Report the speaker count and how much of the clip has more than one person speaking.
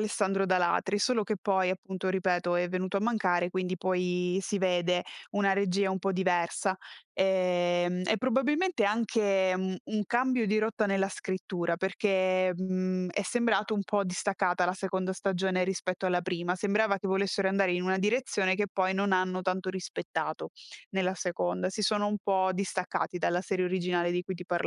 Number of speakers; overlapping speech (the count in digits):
1, no overlap